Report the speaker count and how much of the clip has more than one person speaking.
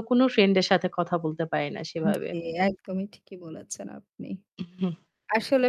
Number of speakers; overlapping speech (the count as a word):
two, about 4%